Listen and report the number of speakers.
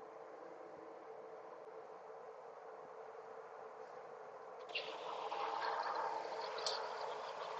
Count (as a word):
zero